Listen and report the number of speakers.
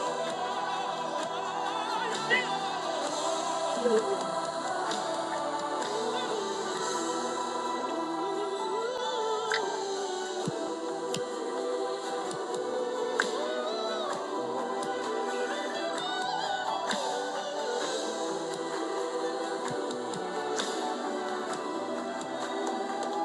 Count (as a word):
zero